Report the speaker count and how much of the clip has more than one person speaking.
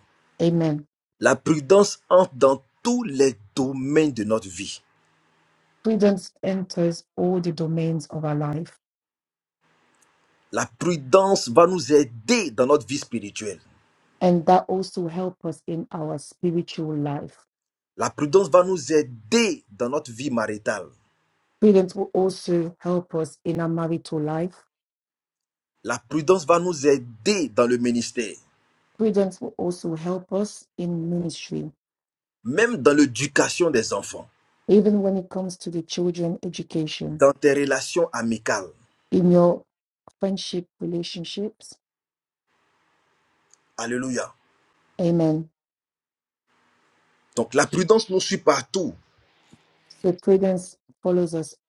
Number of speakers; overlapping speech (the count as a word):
two, no overlap